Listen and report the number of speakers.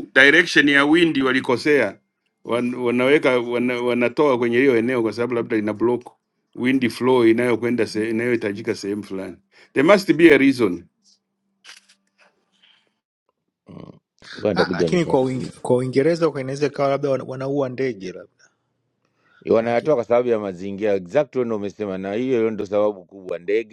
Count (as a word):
three